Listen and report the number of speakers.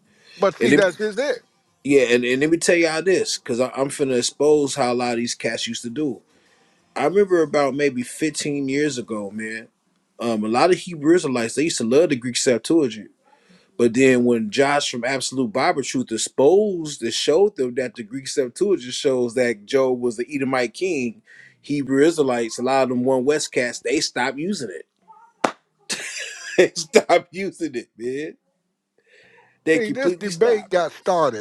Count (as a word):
two